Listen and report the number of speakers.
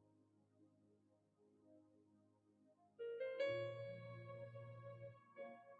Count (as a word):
zero